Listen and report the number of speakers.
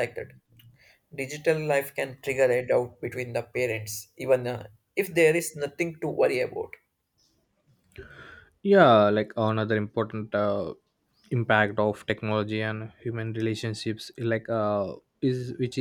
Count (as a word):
two